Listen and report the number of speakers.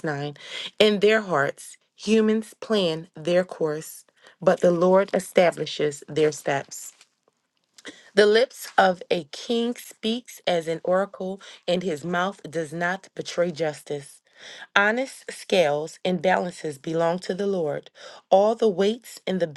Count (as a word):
one